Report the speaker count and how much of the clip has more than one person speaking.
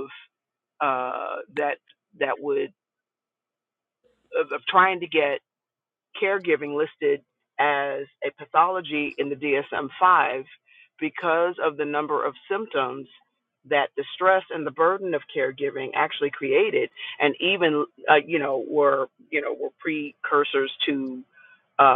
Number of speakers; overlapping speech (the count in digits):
1, no overlap